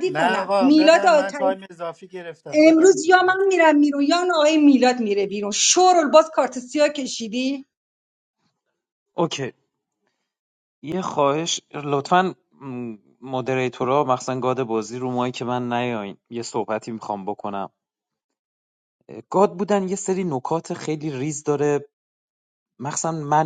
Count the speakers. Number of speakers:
3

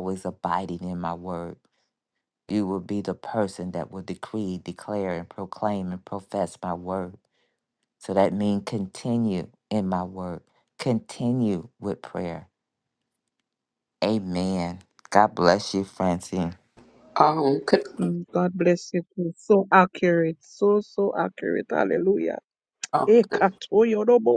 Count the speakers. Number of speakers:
3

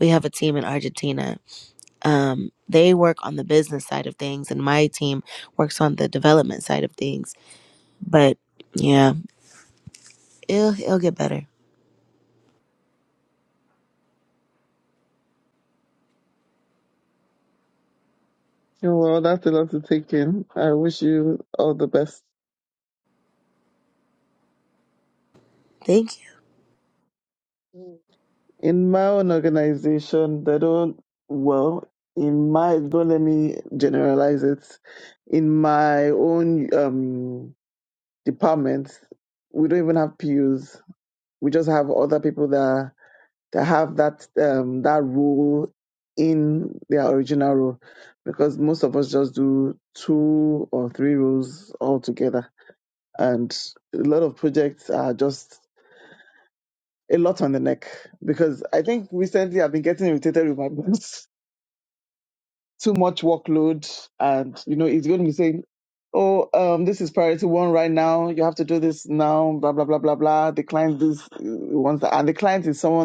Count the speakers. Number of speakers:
2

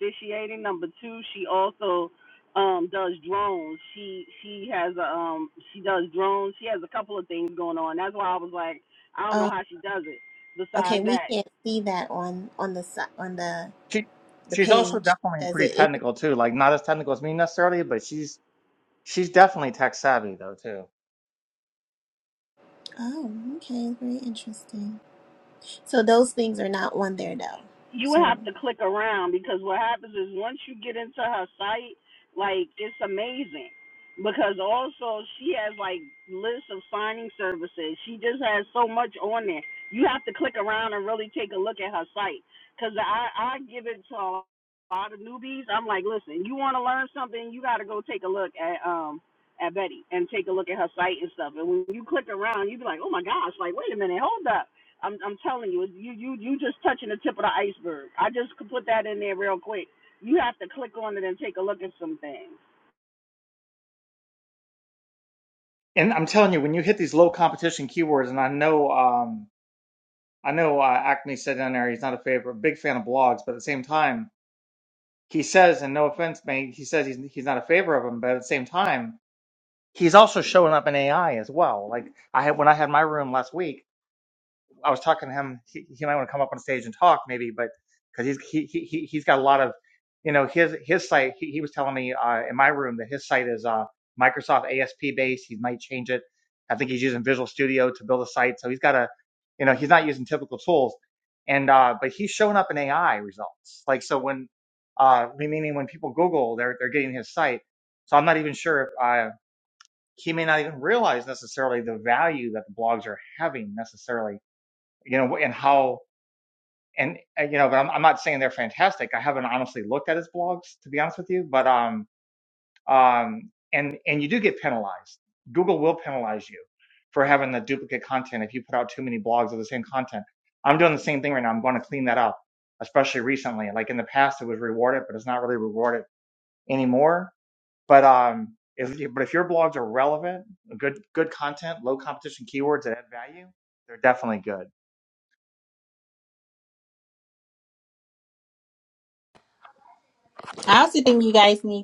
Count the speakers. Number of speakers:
4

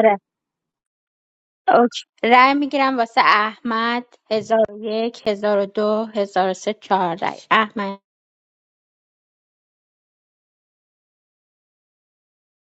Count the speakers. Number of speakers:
1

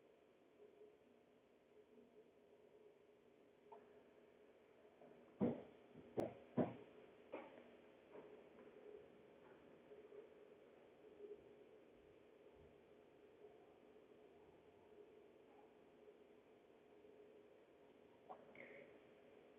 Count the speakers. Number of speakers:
0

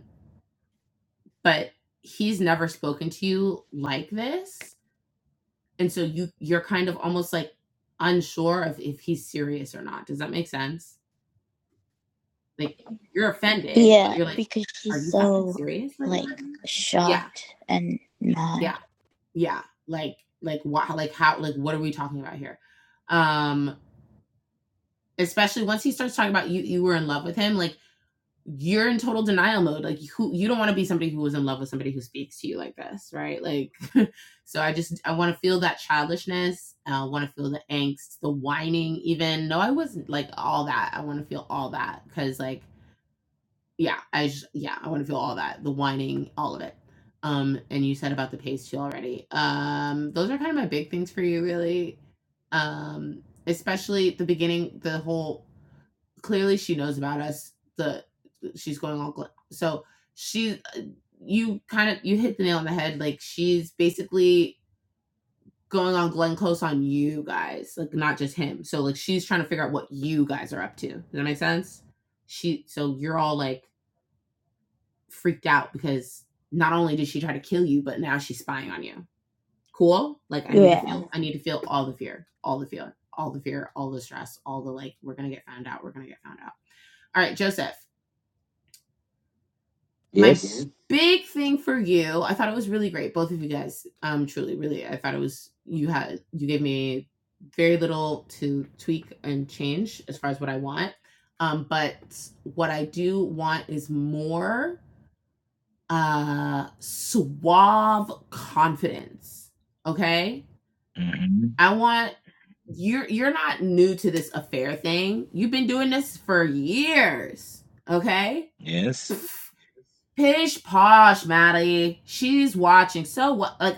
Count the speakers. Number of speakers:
3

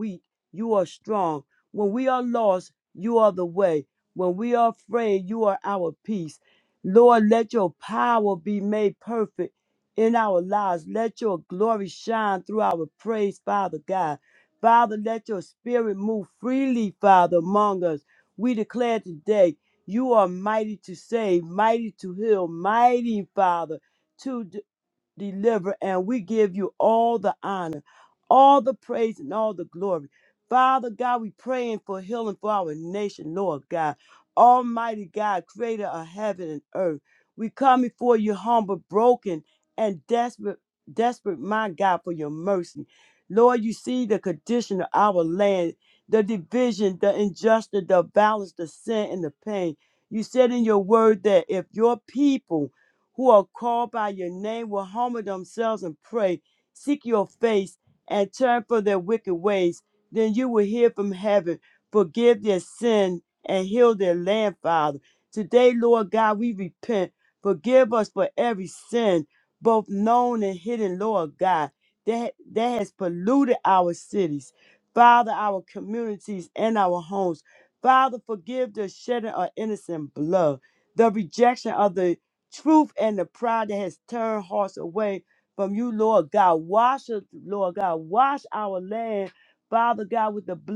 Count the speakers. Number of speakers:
1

